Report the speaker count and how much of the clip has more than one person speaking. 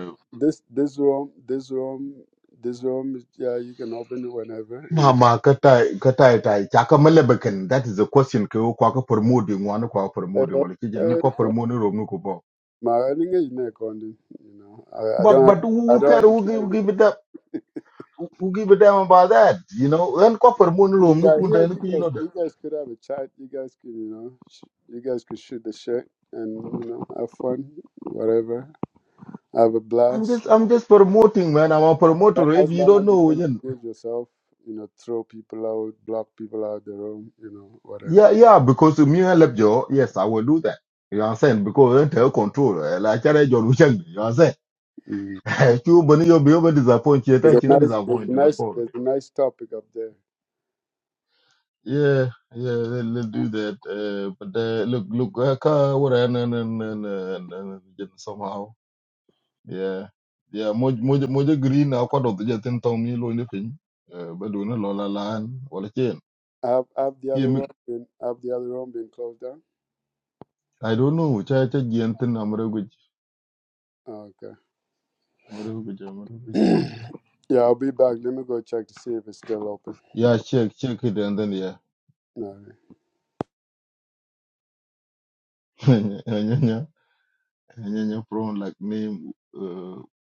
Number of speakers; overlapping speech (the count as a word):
two, about 7%